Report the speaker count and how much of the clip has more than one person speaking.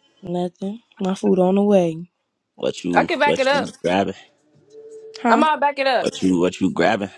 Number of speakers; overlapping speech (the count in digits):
3, about 14%